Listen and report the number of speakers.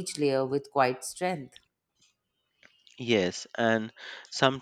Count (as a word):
two